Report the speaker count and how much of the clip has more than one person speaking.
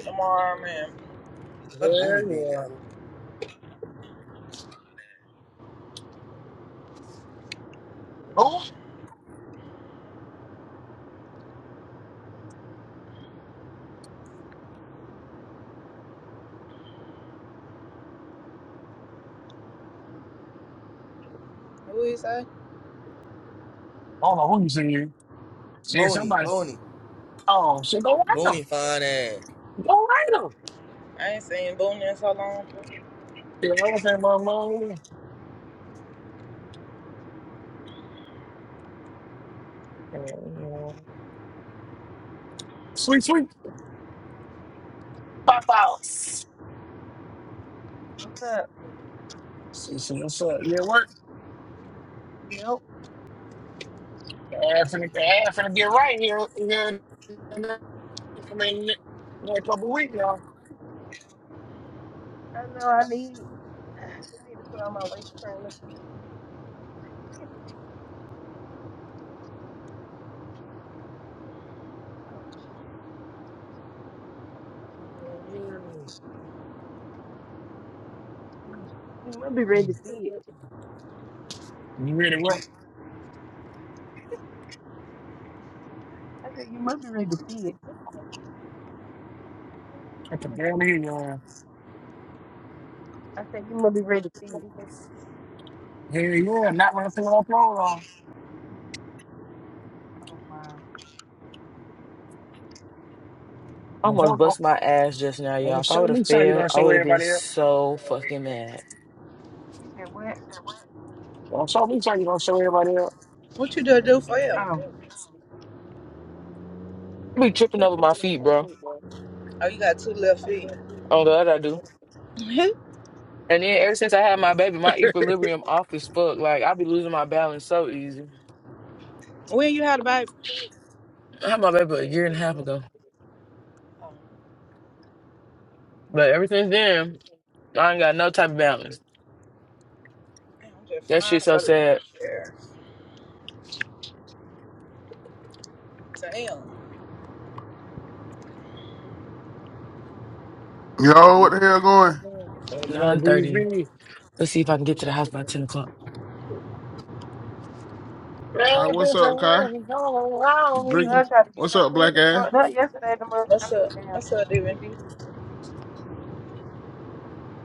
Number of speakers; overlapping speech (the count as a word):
six, about 5%